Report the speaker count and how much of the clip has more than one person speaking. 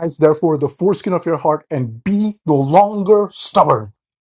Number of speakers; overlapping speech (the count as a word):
one, no overlap